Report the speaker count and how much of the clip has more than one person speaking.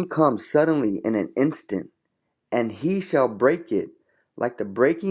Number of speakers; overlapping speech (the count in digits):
1, no overlap